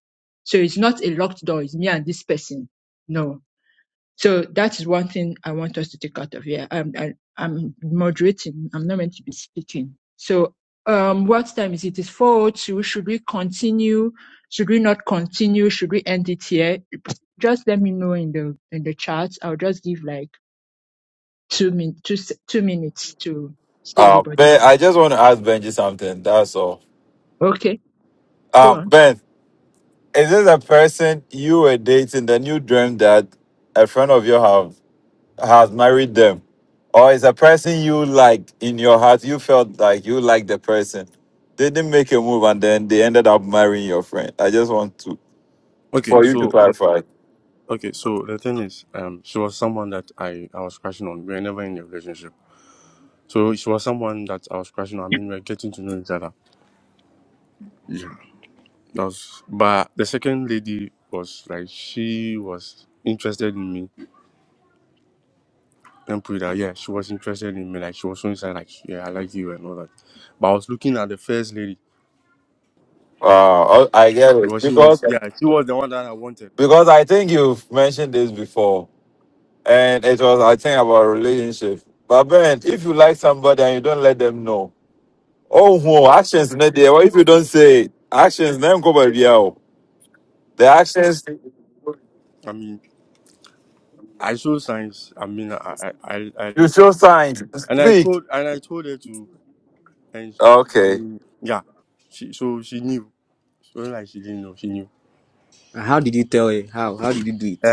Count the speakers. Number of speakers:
4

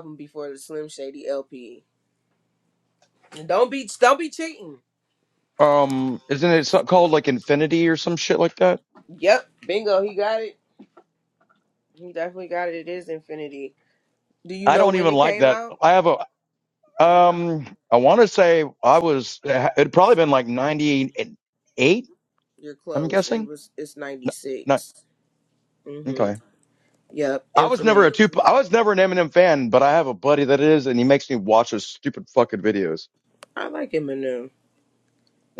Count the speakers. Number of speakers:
2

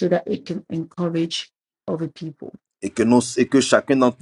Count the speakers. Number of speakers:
2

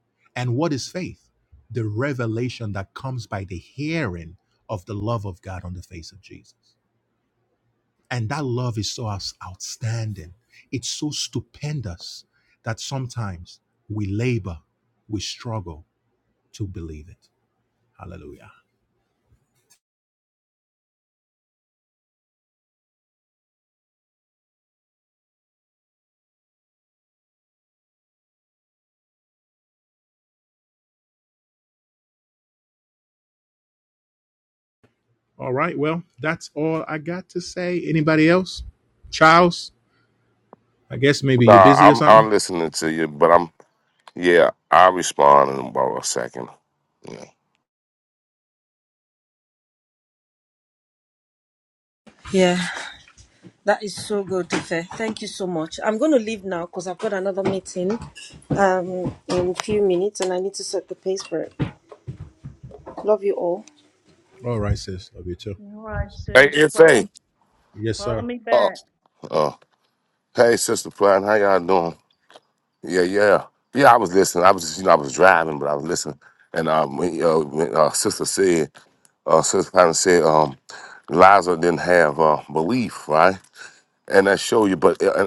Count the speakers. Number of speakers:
4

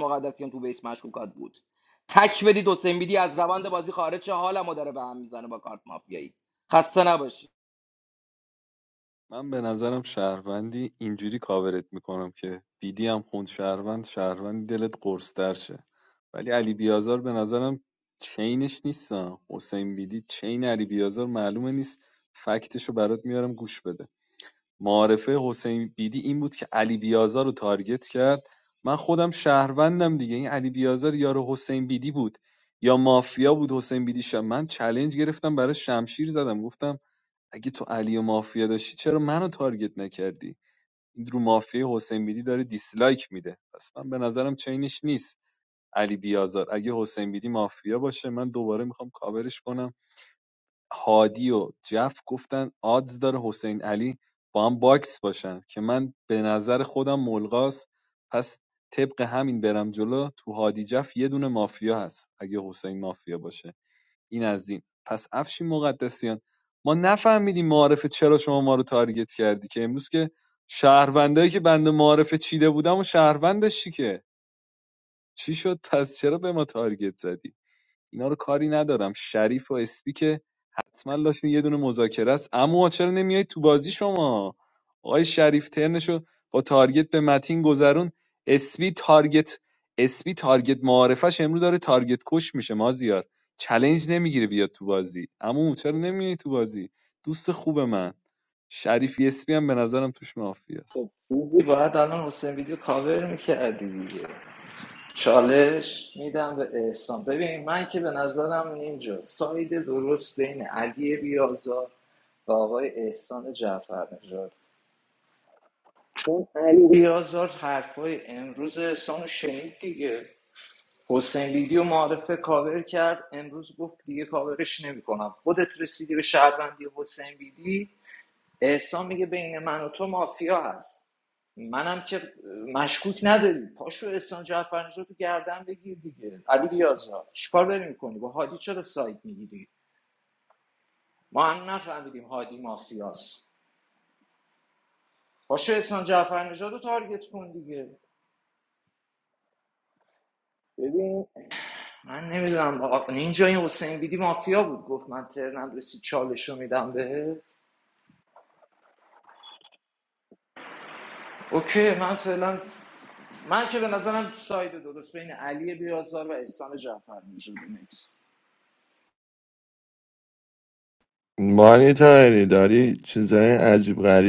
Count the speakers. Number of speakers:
4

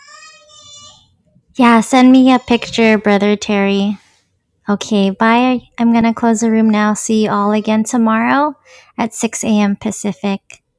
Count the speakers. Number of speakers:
1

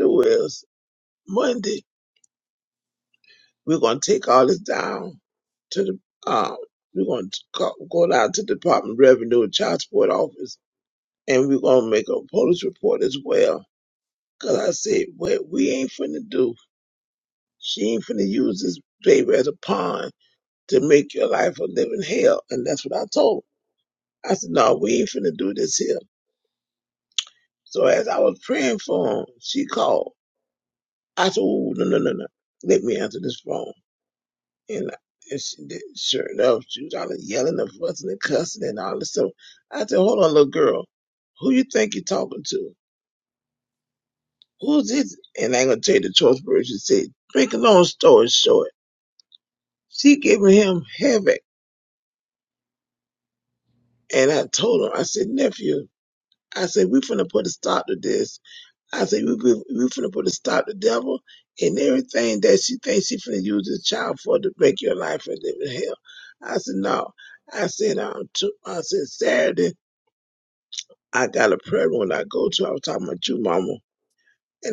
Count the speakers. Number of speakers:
1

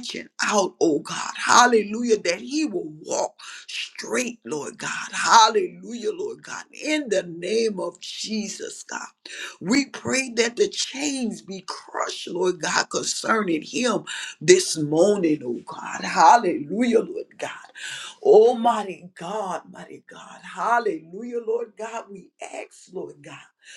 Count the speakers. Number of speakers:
1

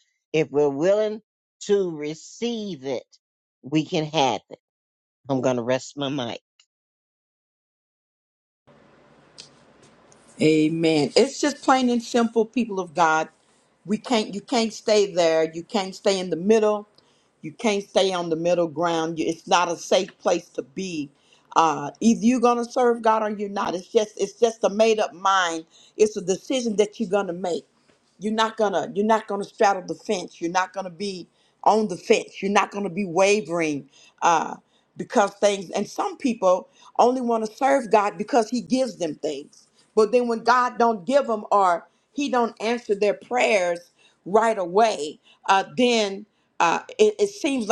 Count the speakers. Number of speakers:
2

